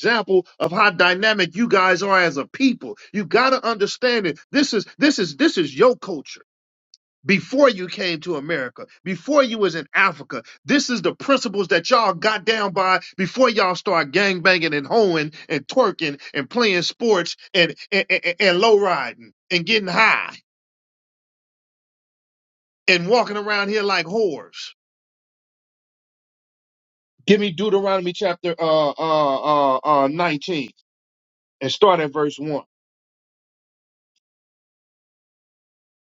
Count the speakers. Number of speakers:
1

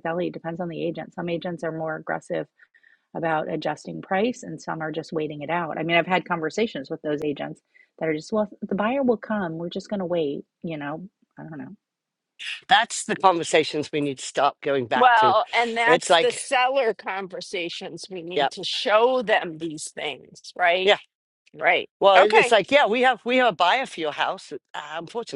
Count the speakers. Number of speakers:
3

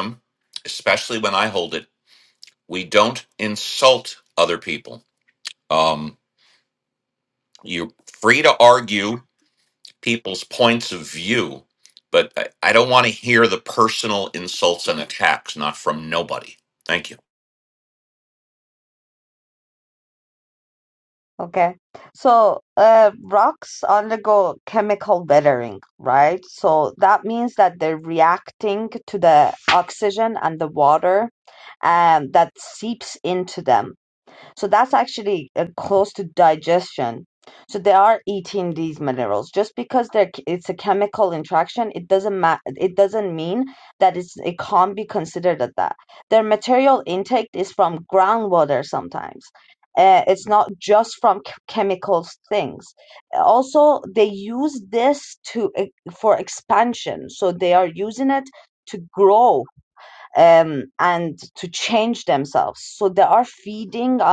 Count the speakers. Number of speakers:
2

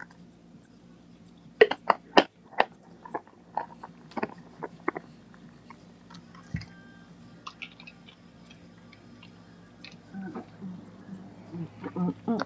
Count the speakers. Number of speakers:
0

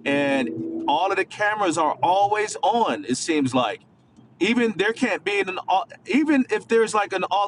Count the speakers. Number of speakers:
1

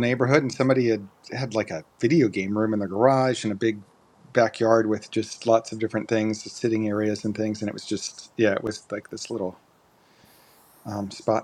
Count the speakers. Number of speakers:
1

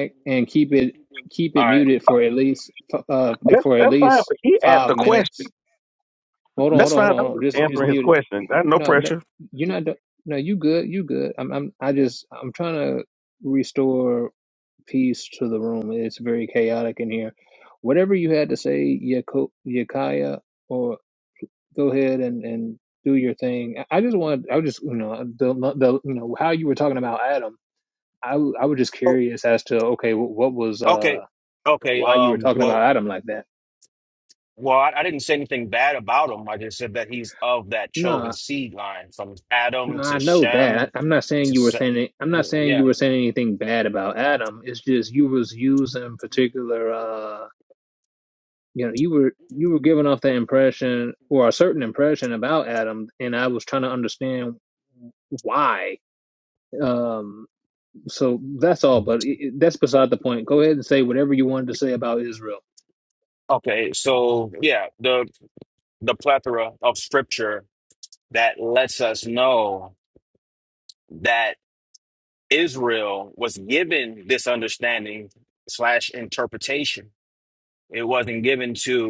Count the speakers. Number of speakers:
3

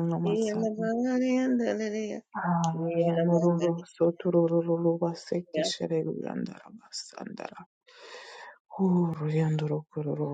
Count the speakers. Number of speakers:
2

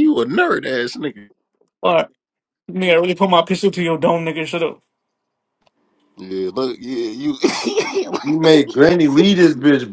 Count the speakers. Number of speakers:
3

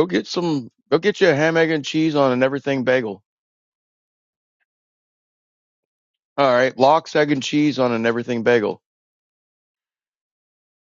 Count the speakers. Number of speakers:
1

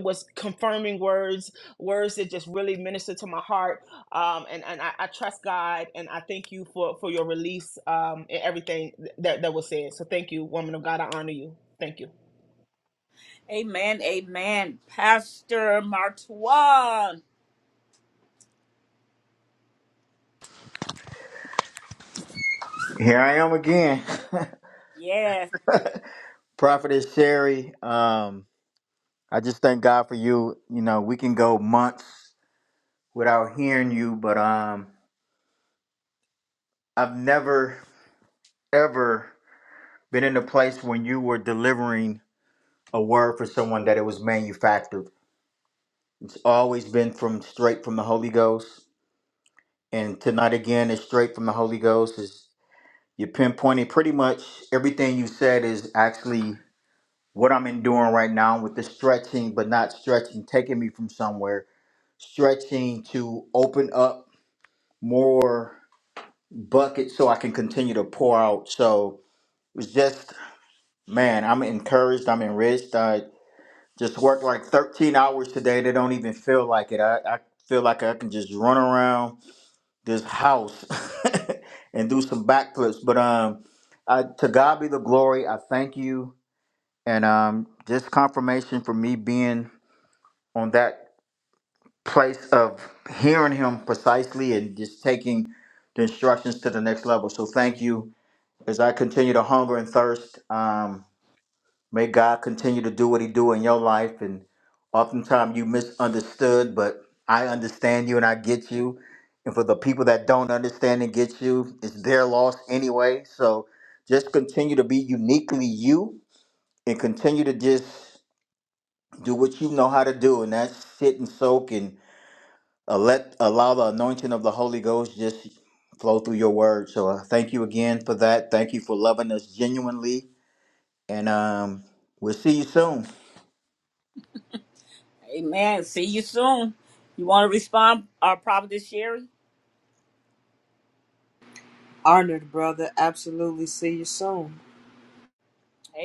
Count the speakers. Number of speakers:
4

